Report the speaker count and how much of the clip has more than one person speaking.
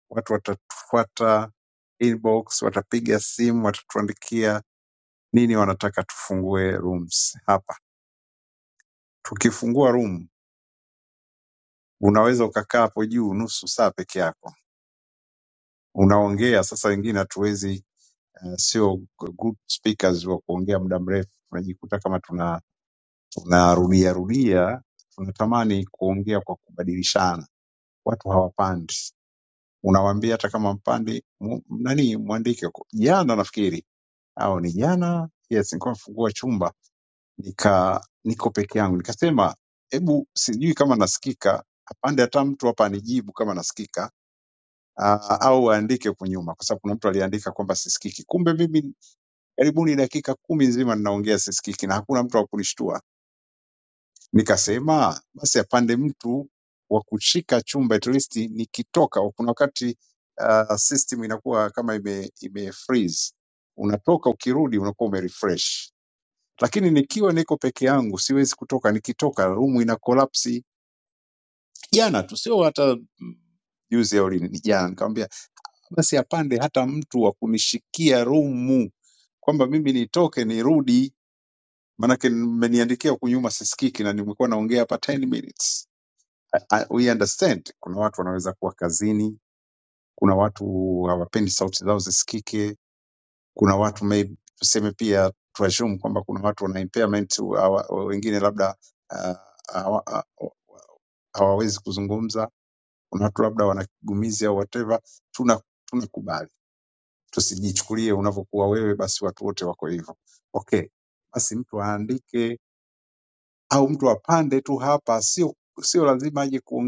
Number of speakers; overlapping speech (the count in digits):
1, no overlap